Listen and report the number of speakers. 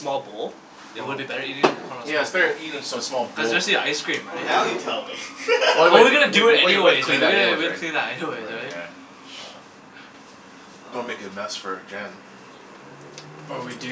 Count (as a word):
three